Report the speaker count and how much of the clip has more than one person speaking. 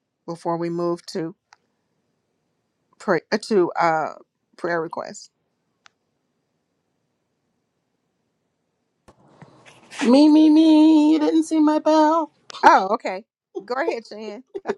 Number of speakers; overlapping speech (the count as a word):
two, no overlap